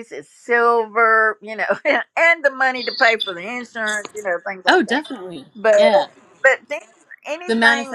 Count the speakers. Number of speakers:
2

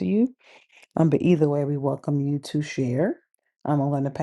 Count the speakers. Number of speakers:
1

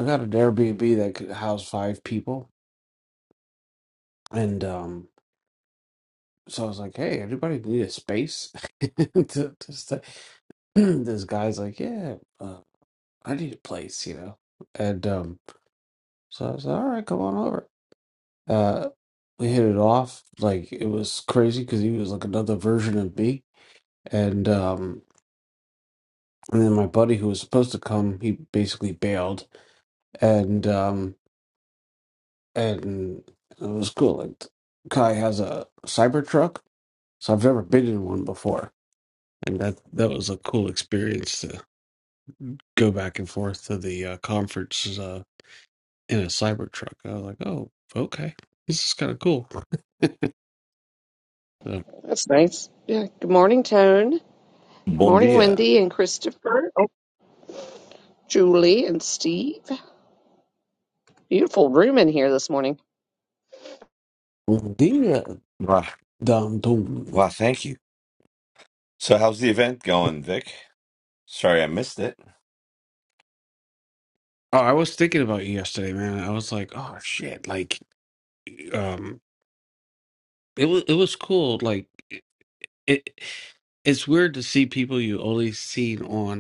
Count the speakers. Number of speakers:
3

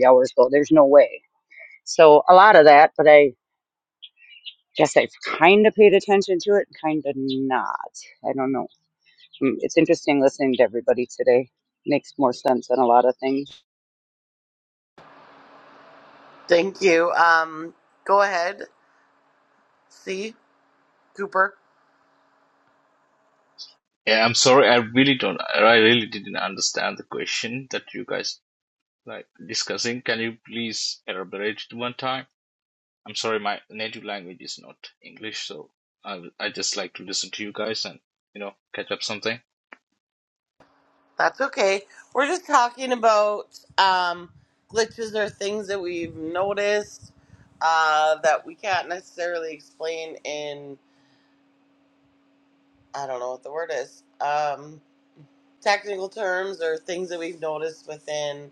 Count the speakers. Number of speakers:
3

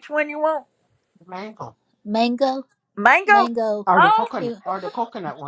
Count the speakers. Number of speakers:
3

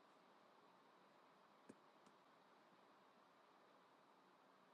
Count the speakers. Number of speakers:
0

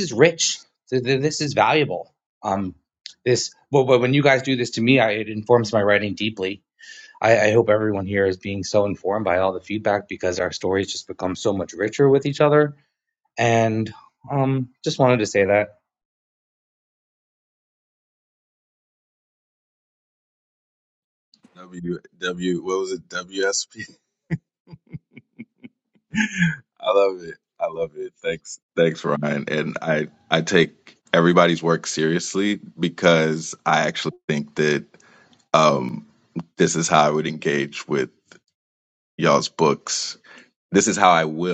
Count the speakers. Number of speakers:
2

